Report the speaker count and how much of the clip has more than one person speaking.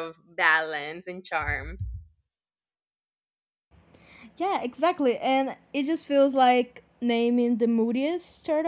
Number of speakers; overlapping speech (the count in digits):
2, no overlap